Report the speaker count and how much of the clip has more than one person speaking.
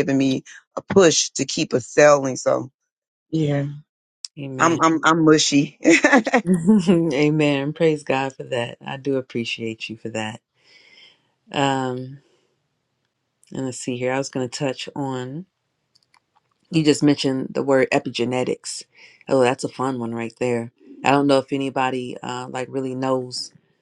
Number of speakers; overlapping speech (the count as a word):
two, about 1%